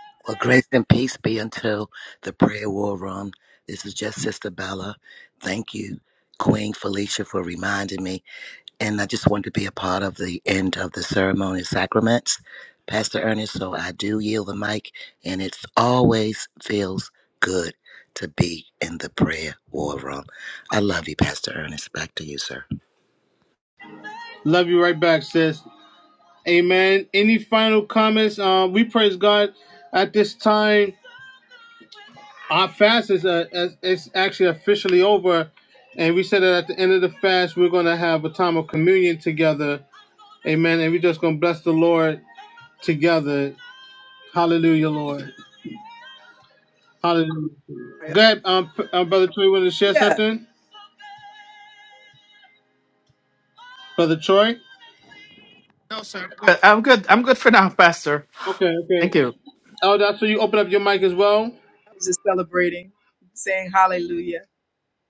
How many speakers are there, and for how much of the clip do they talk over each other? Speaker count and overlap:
four, about 1%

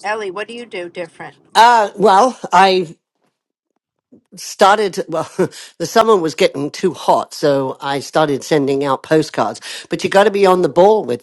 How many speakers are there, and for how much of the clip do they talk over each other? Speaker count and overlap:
two, no overlap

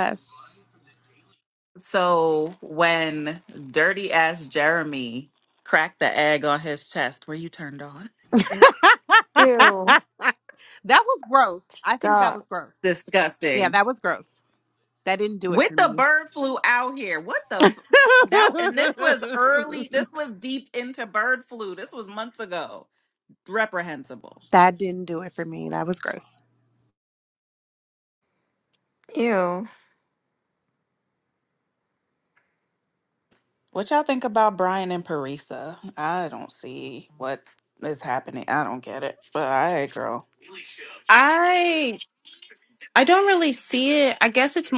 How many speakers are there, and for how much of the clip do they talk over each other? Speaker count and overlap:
four, about 3%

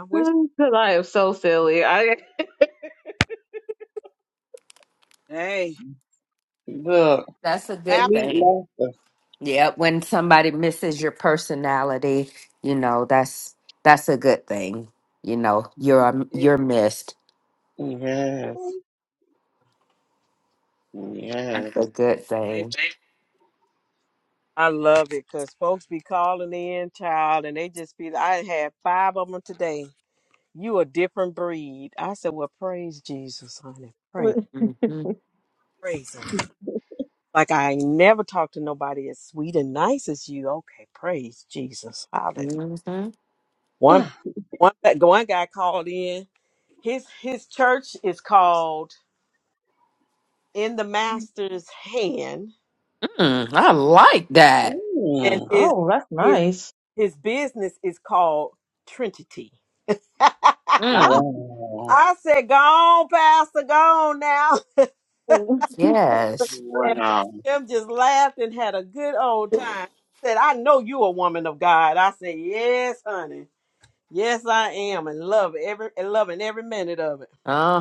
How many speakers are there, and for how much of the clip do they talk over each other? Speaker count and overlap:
four, about 4%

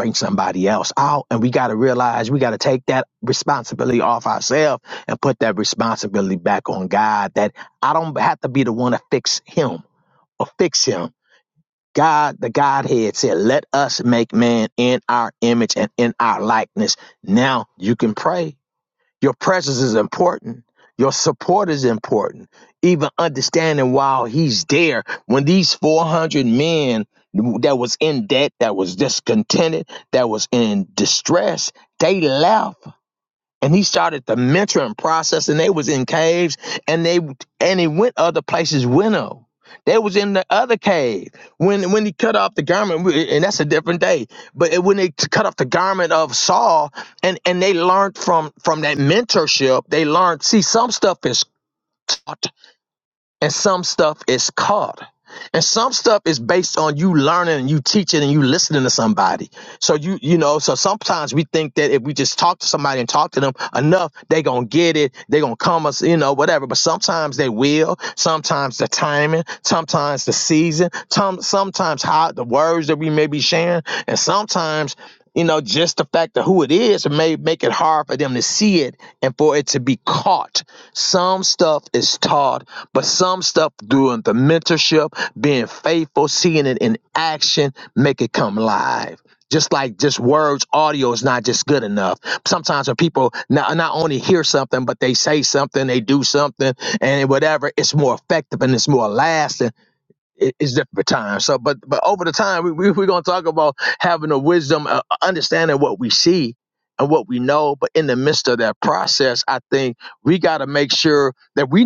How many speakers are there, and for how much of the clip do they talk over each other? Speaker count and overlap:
one, no overlap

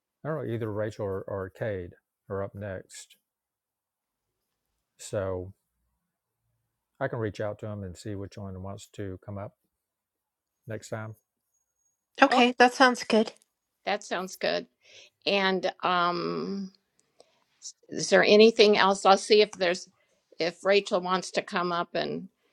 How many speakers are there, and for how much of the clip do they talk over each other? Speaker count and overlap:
three, about 1%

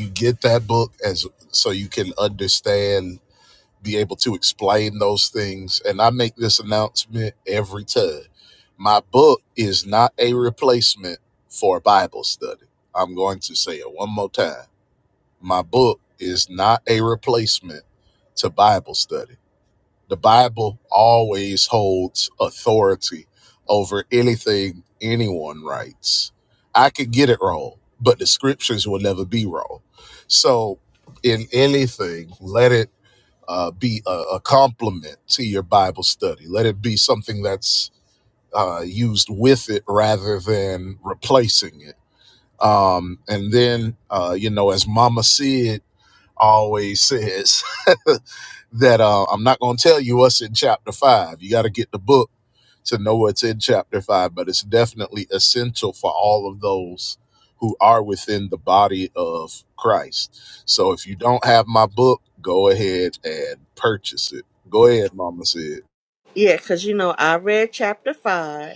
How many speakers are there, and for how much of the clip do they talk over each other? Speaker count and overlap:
two, no overlap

